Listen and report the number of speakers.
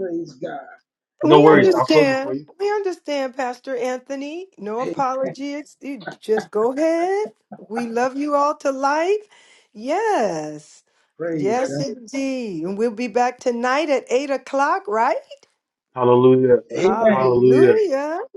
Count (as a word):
three